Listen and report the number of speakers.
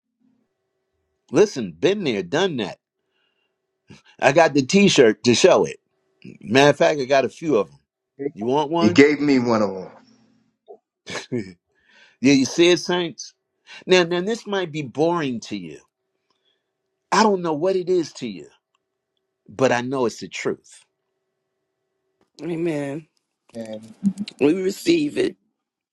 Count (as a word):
three